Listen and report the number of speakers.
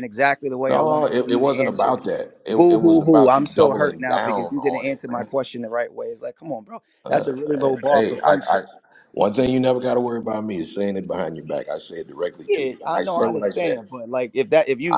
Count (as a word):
two